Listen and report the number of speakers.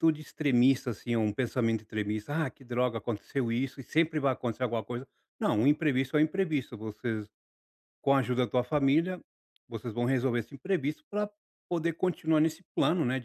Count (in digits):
1